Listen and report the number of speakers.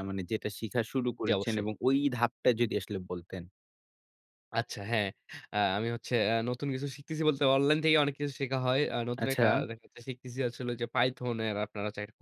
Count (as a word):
two